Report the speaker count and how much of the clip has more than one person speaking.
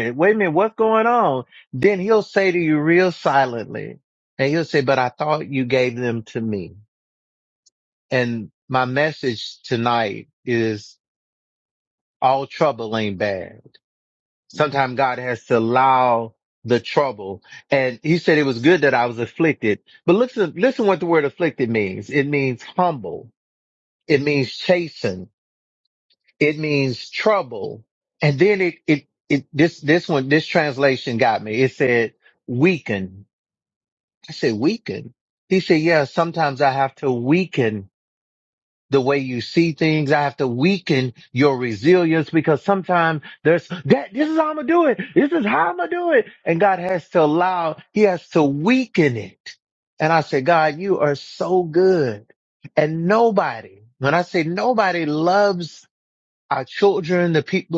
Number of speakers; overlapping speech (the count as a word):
one, no overlap